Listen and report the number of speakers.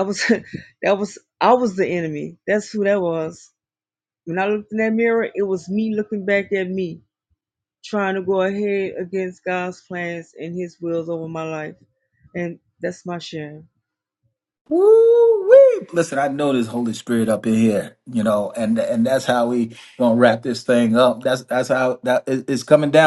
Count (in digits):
2